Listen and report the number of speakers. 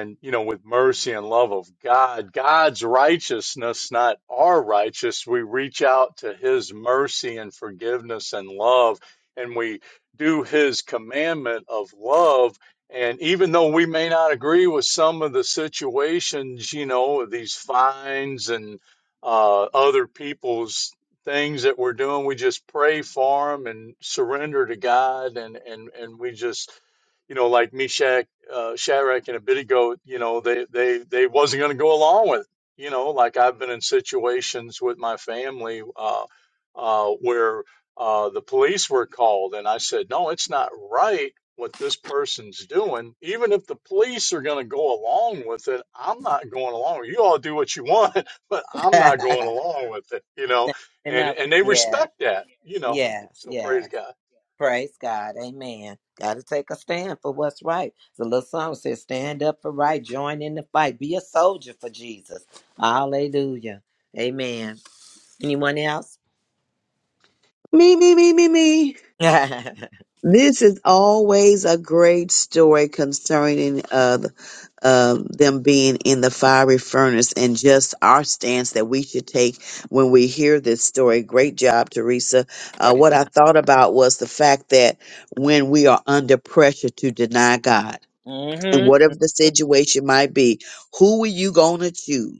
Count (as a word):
three